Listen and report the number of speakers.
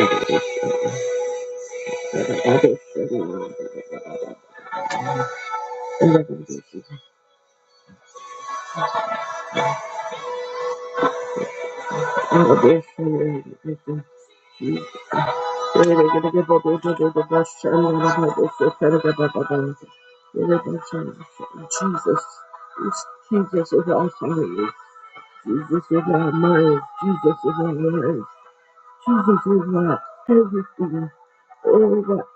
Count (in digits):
1